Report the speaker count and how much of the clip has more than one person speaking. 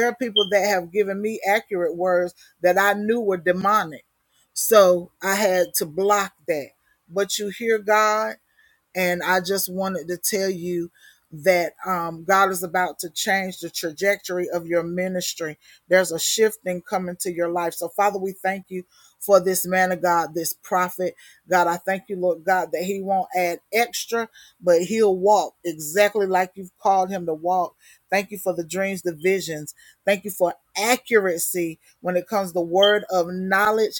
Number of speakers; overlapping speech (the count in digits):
1, no overlap